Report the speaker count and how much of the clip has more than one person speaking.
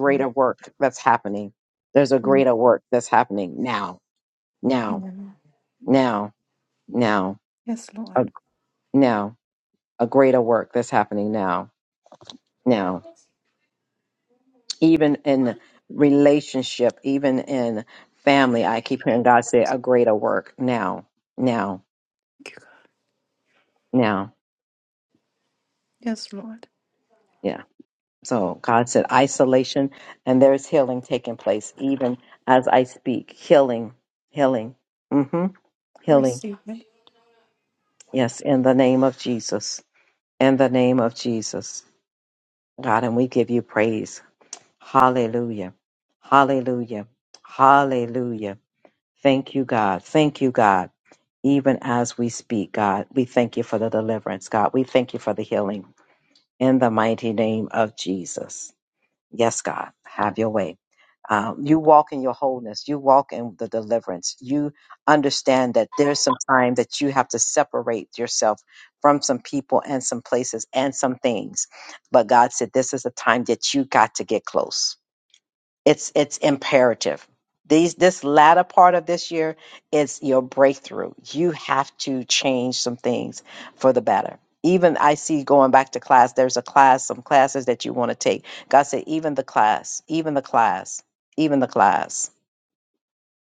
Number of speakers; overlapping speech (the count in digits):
2, about 1%